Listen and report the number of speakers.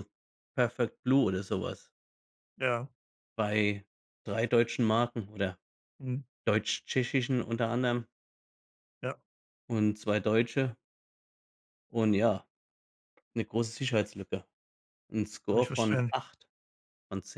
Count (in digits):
2